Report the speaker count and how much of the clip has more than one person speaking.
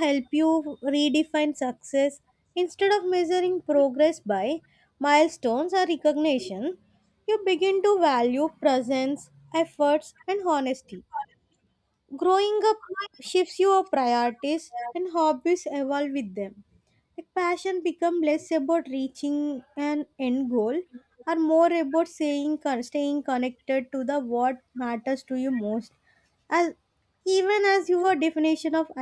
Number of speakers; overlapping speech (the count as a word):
one, no overlap